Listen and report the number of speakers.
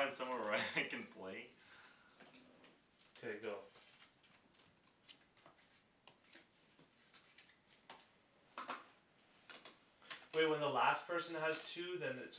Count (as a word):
two